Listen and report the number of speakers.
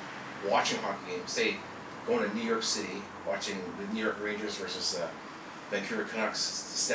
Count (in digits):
1